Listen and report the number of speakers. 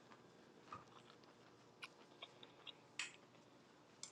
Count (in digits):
0